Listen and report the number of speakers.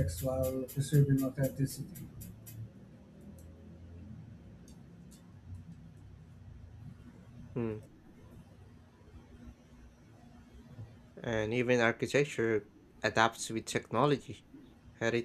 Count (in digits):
2